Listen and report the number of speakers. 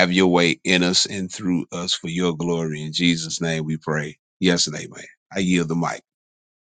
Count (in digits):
1